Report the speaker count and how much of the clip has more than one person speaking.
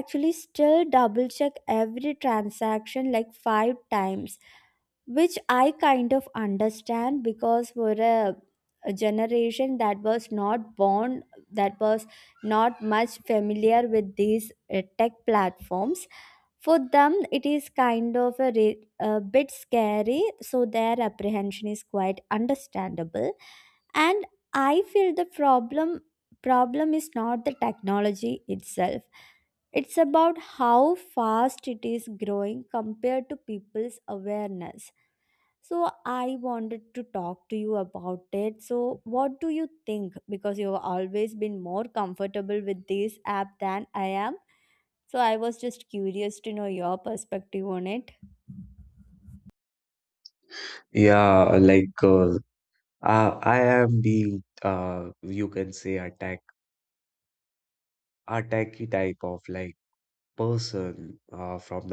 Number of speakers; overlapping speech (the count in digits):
2, no overlap